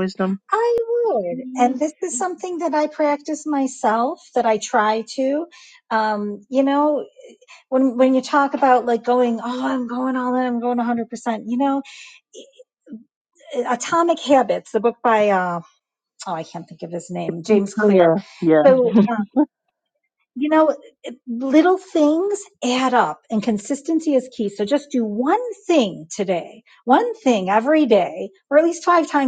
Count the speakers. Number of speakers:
2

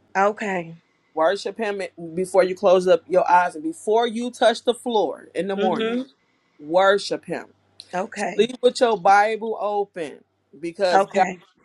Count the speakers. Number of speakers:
2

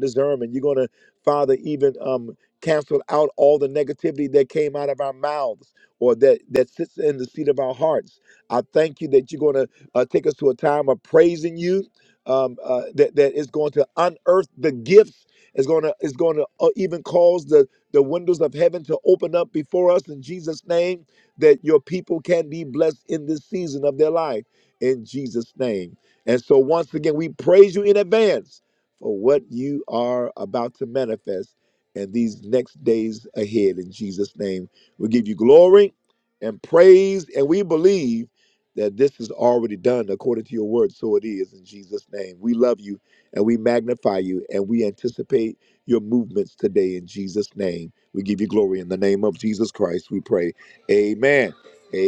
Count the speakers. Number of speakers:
1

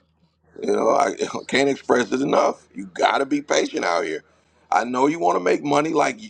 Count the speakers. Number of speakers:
1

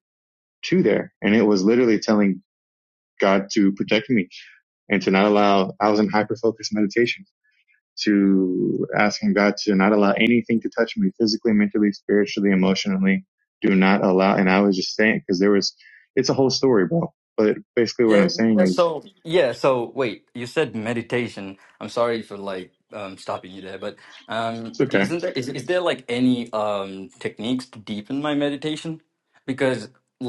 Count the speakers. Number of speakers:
2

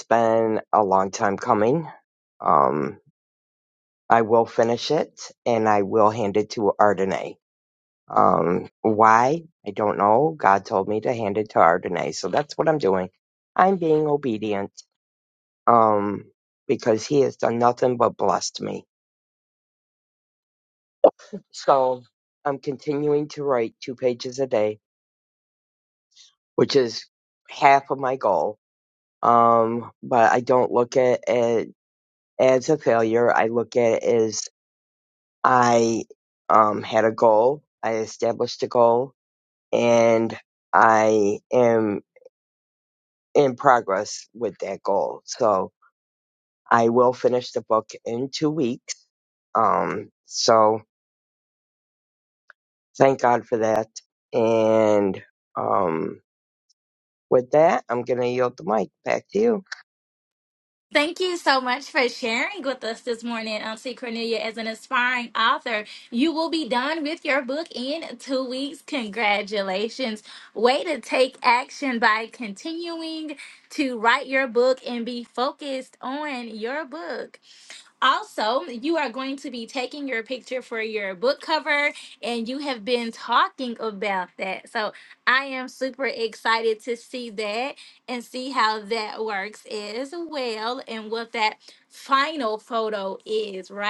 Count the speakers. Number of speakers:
2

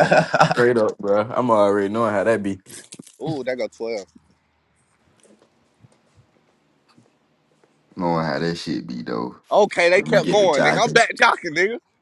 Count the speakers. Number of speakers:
3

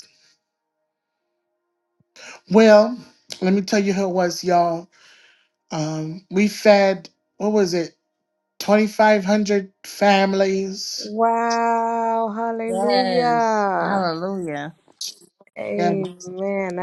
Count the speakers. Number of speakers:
3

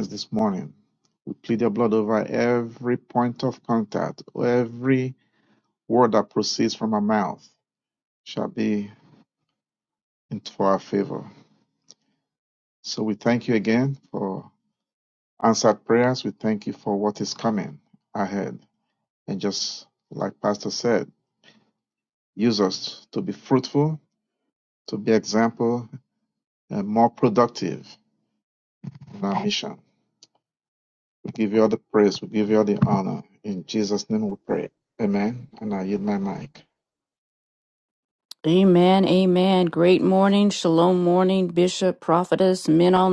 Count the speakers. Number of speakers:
2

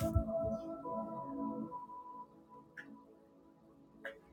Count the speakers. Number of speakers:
0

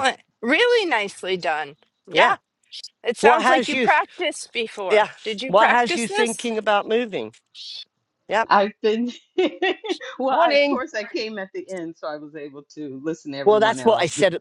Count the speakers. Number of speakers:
3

